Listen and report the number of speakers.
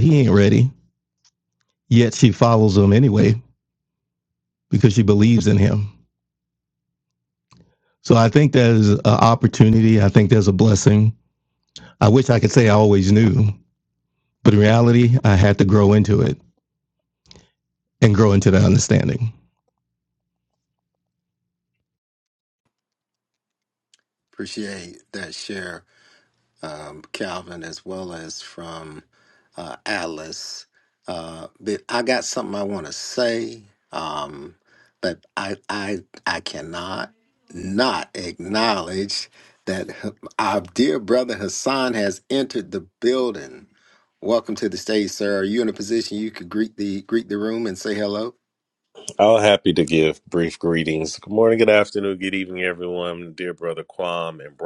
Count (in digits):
3